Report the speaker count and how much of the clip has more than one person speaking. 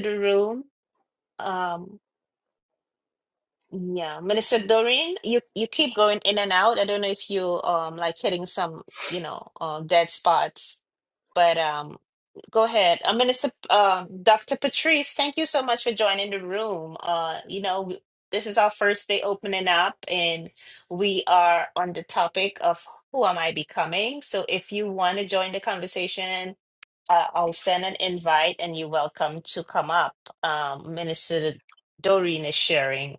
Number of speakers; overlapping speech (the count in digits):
1, no overlap